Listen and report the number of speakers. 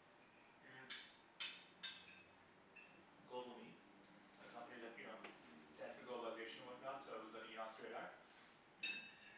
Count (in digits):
1